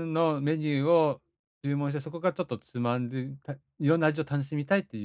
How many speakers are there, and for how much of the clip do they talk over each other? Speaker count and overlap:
one, no overlap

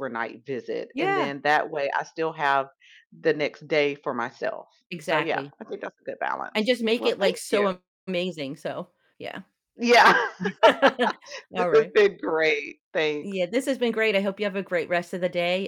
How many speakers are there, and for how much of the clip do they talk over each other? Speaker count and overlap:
two, about 12%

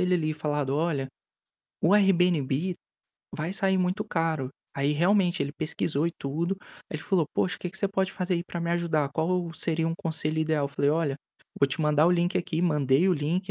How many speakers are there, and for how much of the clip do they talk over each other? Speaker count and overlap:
one, no overlap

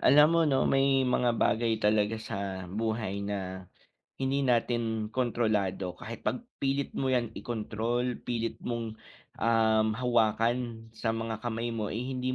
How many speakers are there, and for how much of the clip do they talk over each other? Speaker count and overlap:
one, no overlap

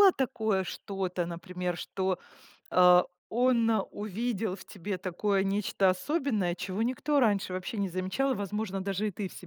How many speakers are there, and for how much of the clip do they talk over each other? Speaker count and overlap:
one, no overlap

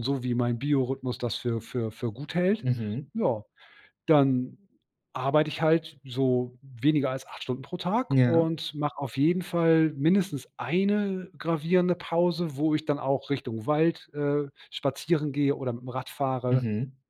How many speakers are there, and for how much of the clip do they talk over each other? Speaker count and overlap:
two, about 3%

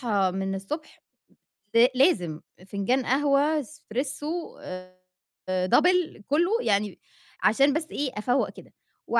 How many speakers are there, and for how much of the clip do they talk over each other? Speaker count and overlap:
one, no overlap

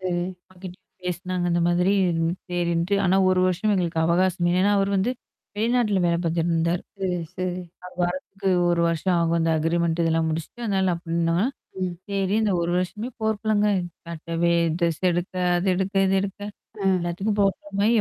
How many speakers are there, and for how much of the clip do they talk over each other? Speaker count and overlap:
two, under 1%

